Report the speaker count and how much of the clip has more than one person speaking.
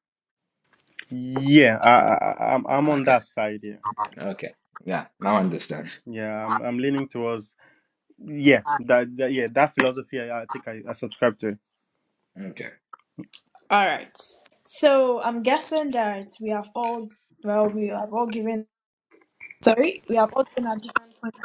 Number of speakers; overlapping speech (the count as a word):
three, about 2%